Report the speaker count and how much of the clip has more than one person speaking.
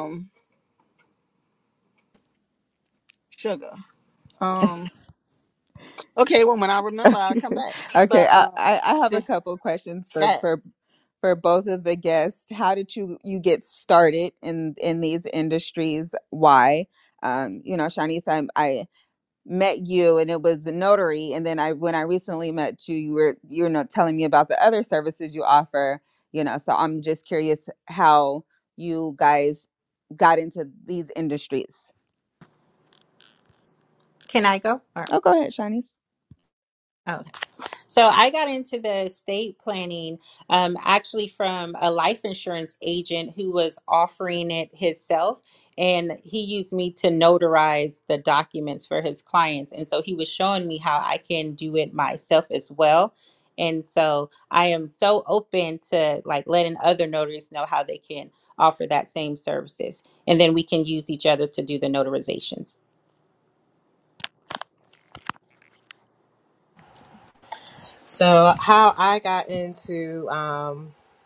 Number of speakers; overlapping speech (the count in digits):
4, about 1%